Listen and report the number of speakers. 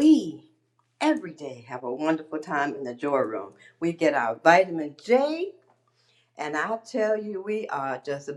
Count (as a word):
one